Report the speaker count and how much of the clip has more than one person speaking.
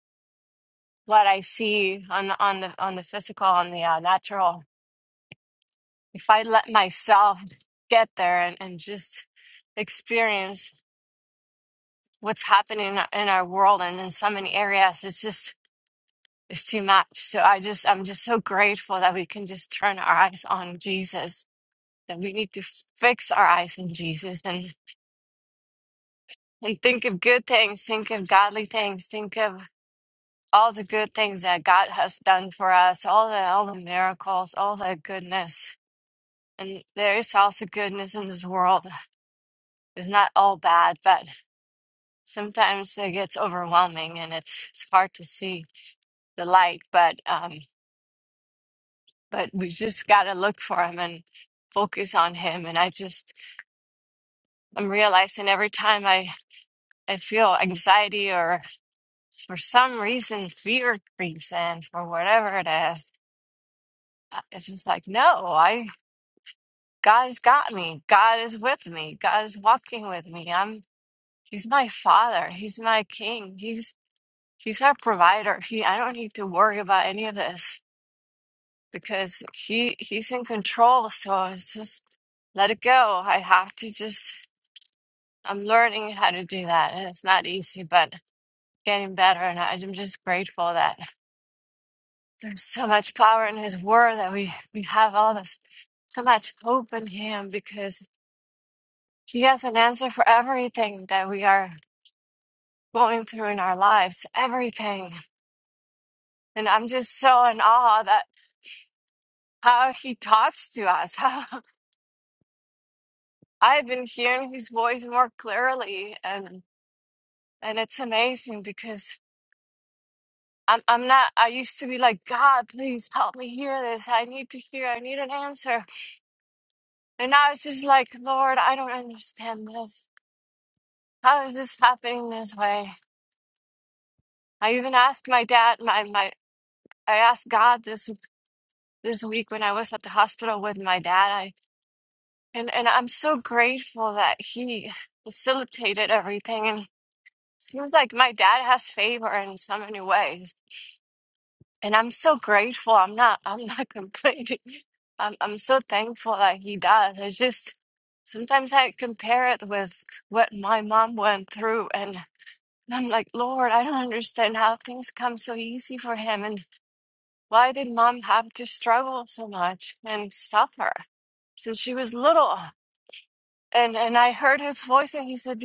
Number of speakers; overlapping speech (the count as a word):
one, no overlap